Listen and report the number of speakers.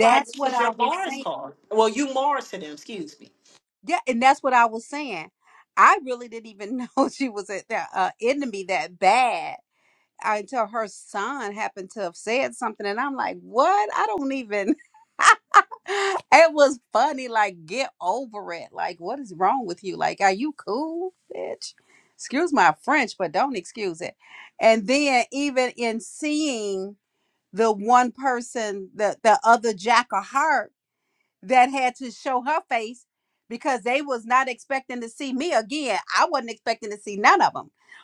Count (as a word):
two